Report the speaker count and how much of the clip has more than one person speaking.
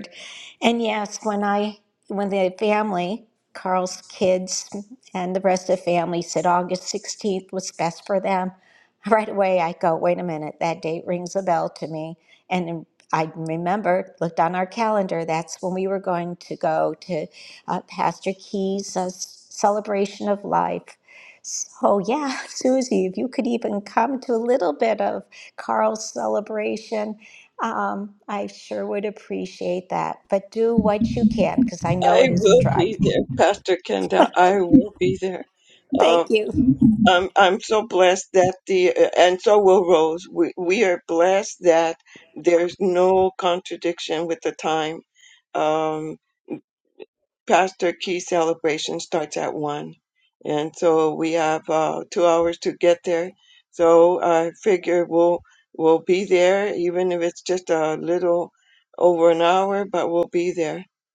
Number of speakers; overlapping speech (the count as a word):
two, about 1%